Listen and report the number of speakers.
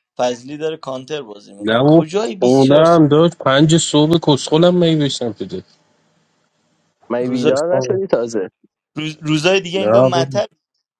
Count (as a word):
three